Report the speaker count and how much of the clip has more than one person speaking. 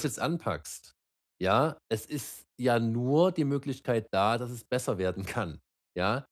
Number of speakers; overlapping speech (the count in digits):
1, no overlap